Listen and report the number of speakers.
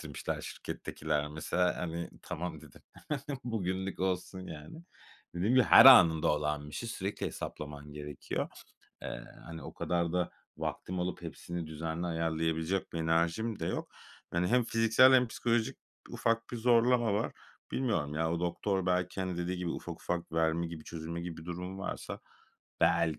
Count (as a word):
one